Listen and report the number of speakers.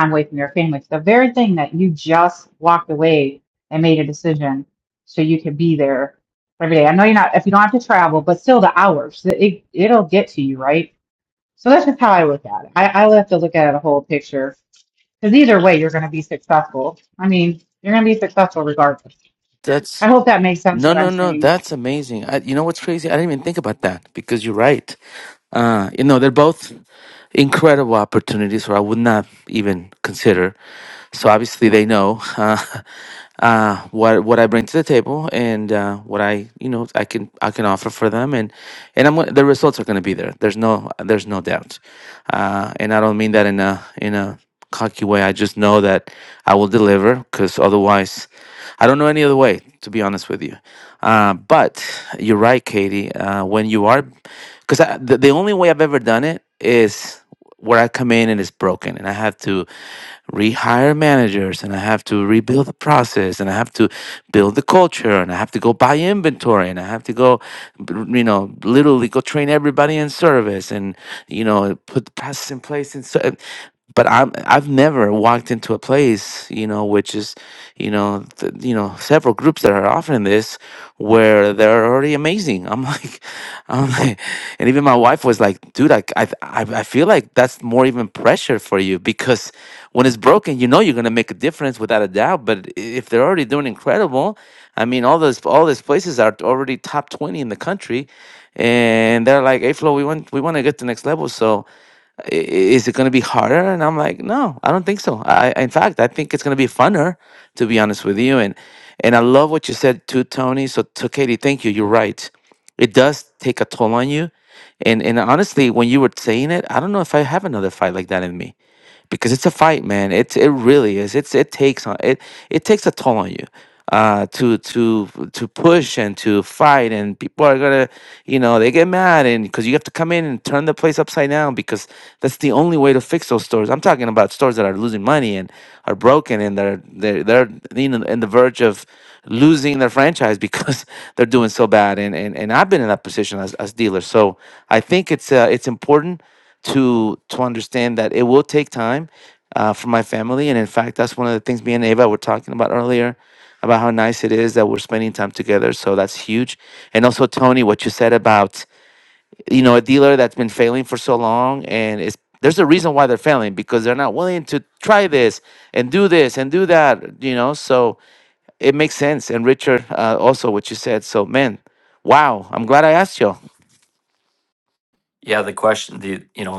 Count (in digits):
3